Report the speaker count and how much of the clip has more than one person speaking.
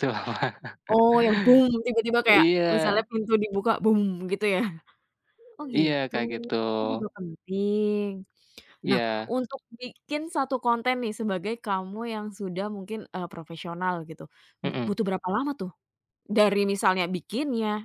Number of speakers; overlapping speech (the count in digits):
2, about 11%